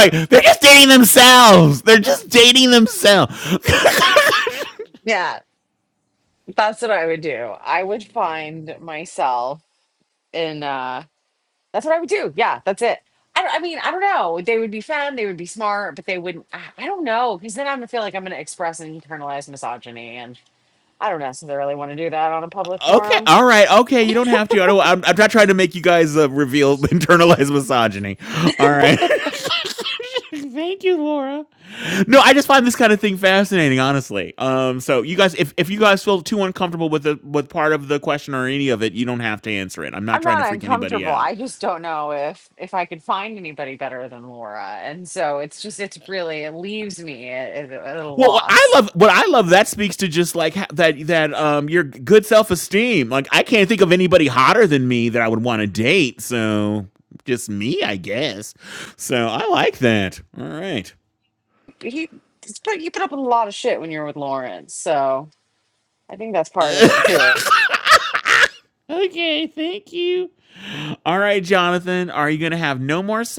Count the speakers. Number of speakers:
2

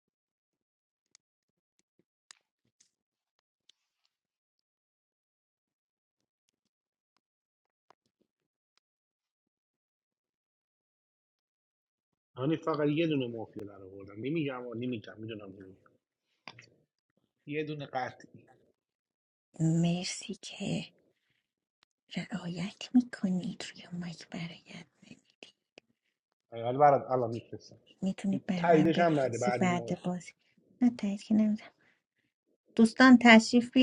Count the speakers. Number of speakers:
2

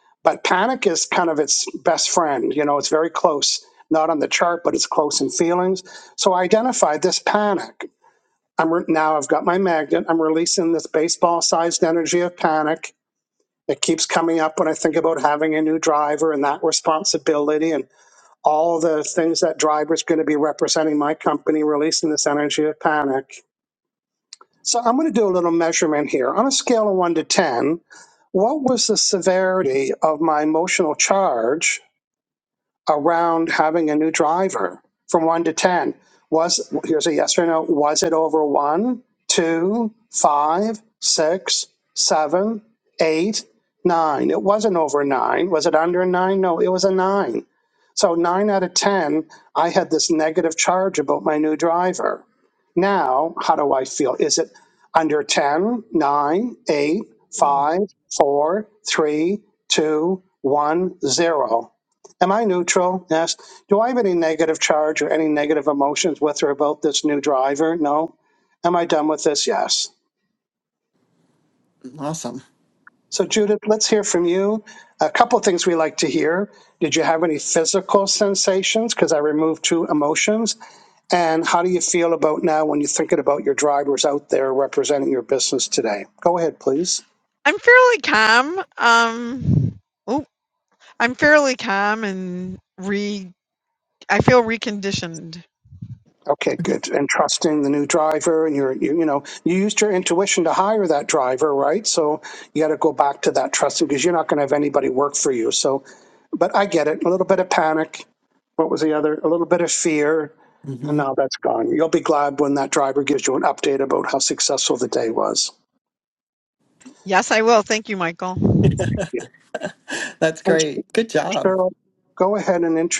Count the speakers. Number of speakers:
3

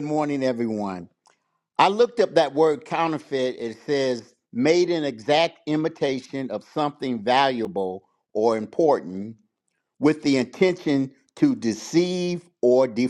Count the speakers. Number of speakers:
1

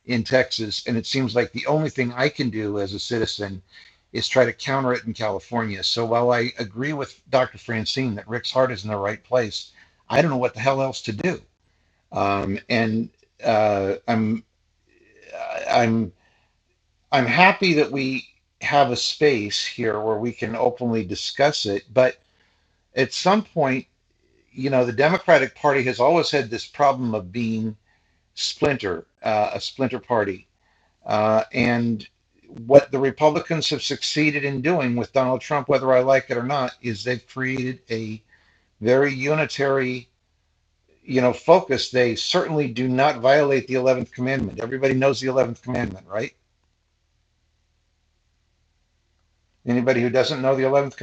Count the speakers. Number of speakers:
1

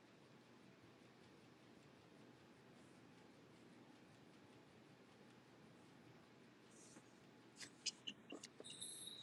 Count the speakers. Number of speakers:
0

